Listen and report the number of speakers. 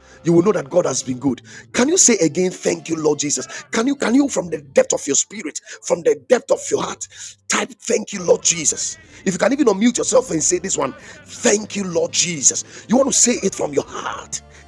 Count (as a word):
one